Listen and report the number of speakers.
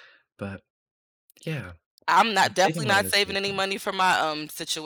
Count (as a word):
two